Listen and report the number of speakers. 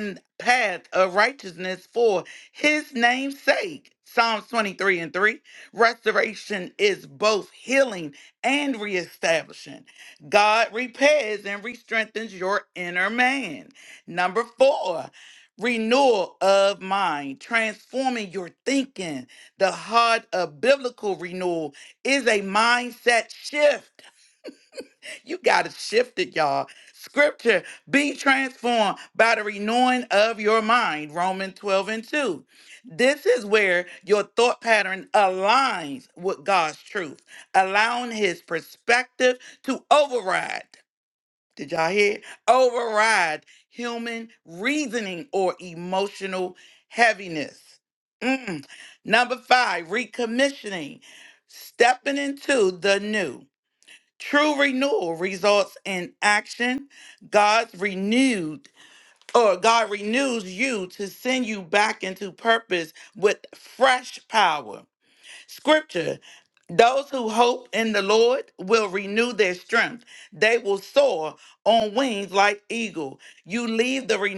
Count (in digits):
1